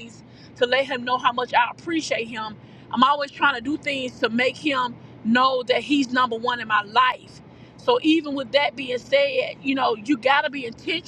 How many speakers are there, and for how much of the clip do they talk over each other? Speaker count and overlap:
1, no overlap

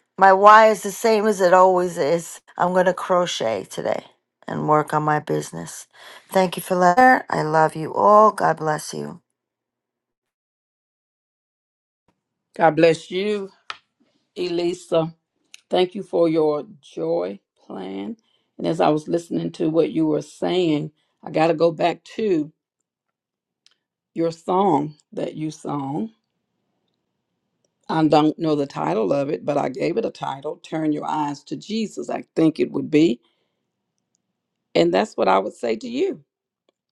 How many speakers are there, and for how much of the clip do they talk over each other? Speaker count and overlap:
2, no overlap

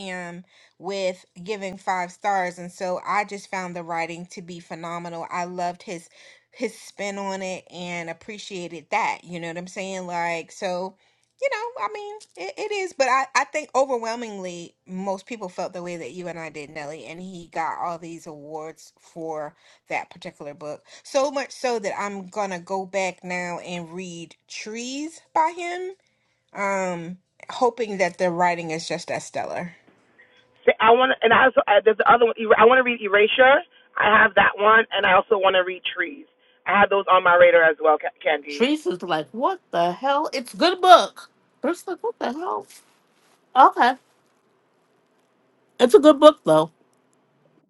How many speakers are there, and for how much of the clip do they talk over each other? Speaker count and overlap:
3, under 1%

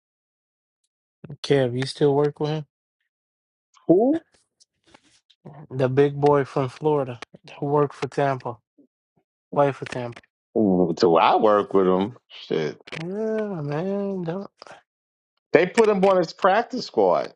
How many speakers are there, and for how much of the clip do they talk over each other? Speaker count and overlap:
2, no overlap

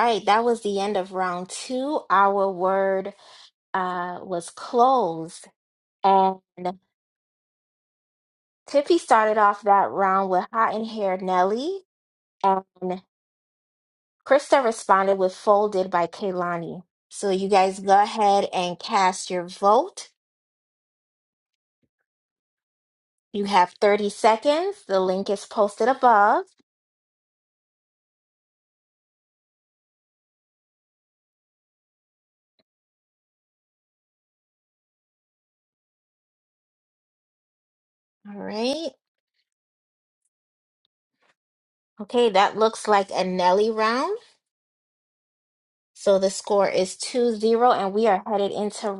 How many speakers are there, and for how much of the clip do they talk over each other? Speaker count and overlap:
1, no overlap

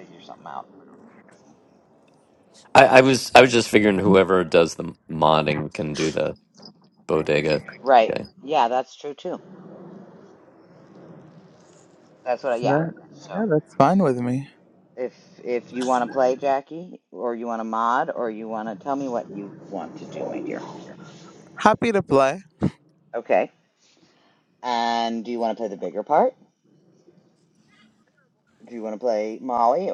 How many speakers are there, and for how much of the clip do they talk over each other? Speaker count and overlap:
3, about 2%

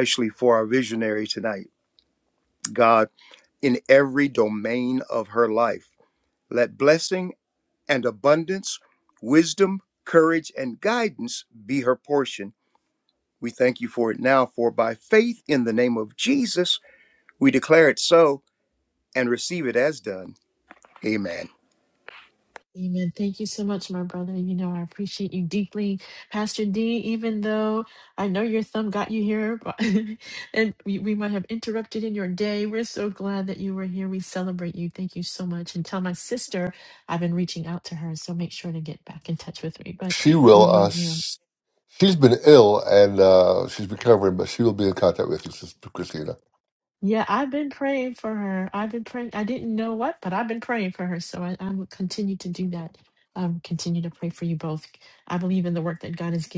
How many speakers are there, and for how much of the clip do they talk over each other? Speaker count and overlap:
3, about 2%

